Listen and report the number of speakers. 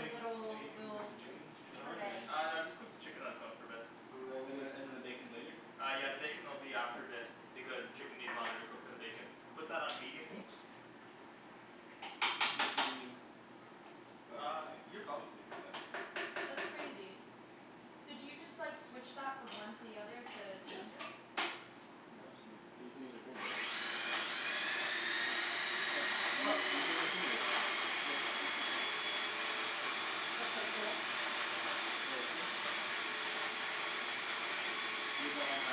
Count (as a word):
four